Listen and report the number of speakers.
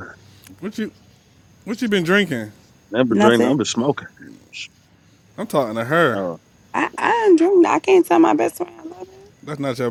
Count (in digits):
3